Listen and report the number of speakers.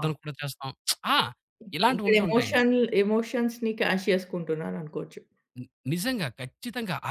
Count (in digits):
2